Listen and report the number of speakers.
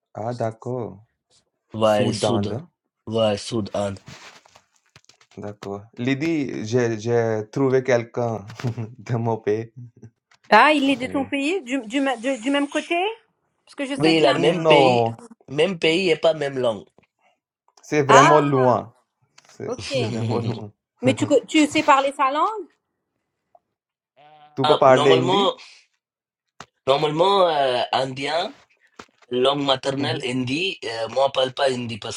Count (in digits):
3